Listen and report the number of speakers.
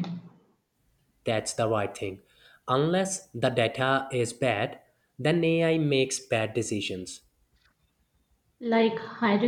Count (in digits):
2